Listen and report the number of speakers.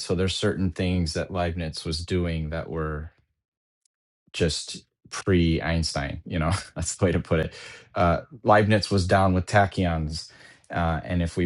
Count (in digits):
1